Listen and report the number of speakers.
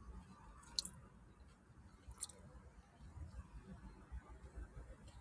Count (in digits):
0